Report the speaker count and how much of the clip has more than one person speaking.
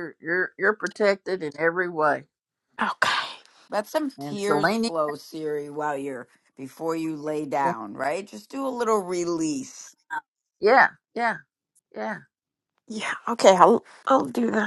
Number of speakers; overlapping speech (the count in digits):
3, about 5%